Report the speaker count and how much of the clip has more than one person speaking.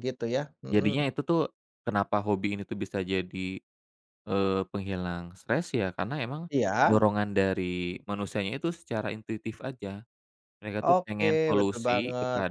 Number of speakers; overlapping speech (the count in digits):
2, about 17%